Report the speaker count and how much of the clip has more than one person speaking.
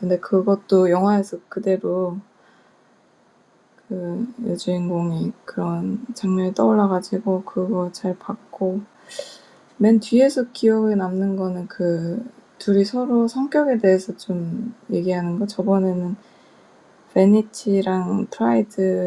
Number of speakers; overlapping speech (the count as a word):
one, no overlap